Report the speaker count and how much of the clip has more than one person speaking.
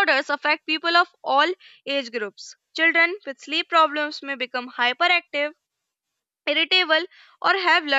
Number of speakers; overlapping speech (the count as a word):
one, no overlap